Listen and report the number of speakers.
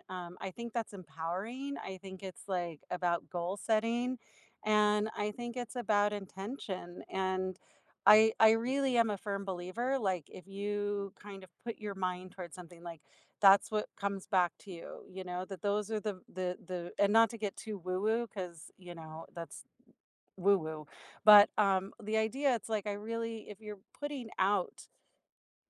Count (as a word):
one